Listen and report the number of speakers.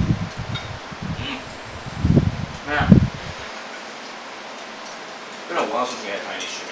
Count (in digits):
1